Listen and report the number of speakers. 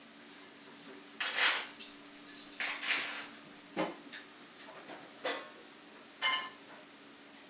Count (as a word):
zero